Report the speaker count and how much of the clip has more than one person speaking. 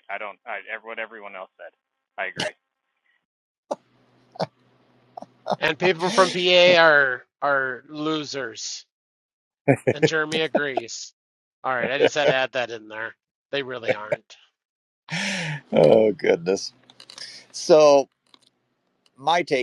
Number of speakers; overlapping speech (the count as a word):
three, no overlap